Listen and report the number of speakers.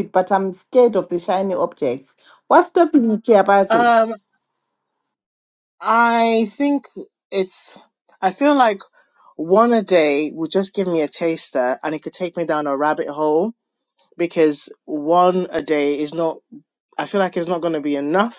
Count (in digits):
2